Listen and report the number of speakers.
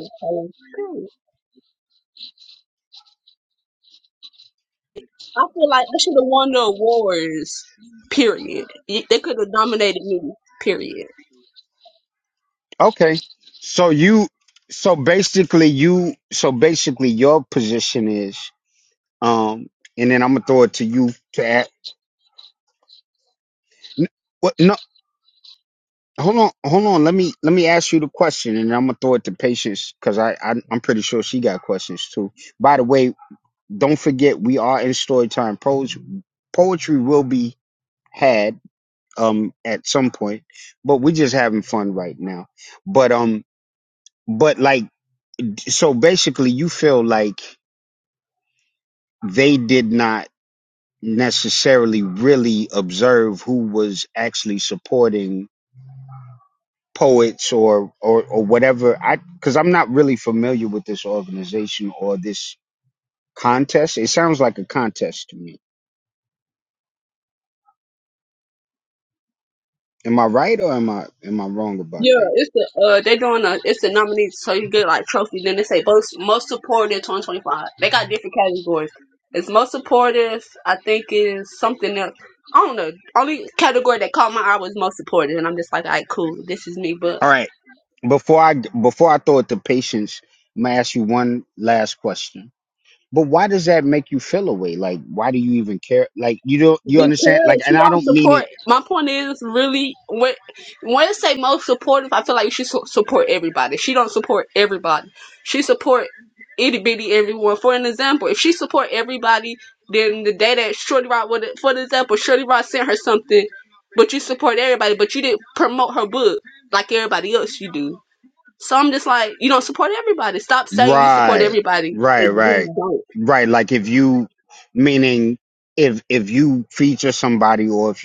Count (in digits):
2